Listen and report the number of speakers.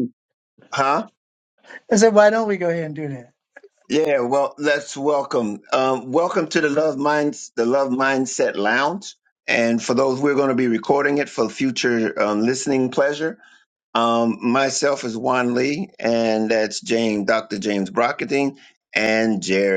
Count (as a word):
two